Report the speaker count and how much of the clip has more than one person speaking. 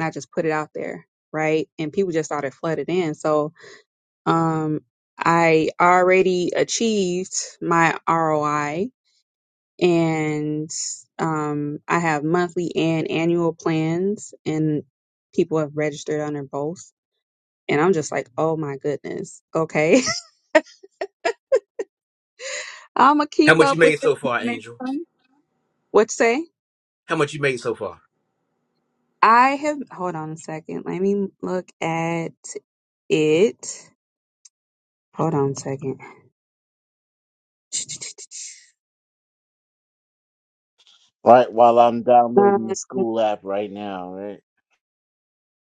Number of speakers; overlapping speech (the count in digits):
3, about 3%